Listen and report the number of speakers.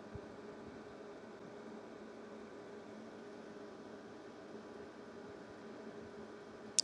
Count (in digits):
0